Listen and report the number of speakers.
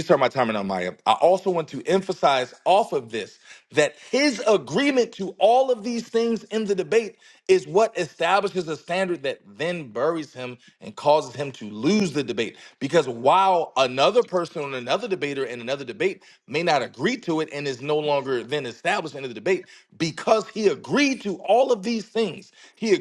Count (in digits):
1